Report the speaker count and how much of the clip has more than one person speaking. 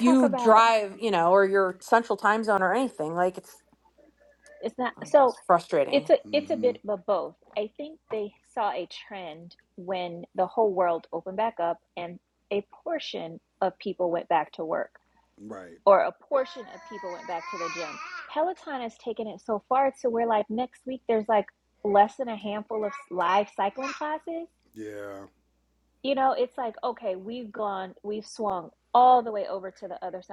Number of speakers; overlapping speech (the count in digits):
3, about 4%